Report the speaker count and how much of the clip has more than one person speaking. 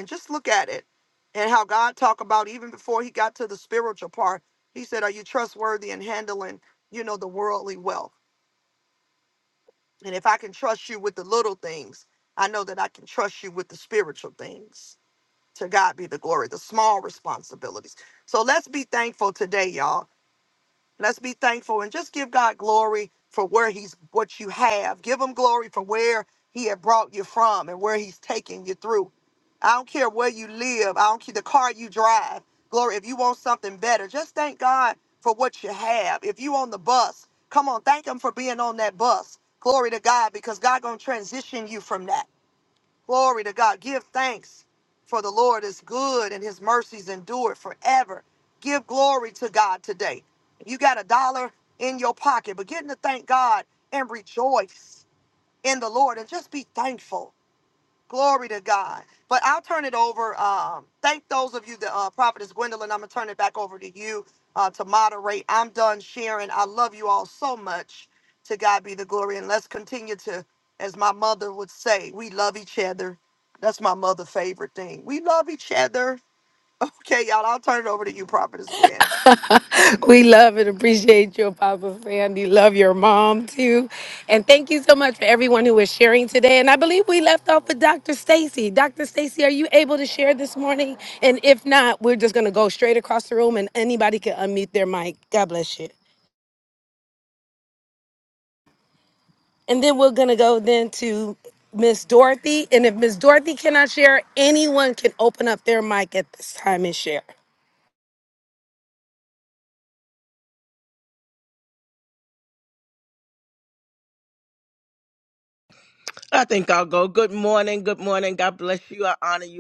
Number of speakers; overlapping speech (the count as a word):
three, no overlap